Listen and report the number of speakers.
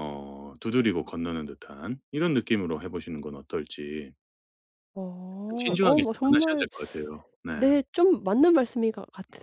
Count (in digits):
2